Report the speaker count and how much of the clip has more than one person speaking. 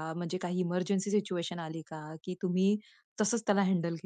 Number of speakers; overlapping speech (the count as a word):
one, no overlap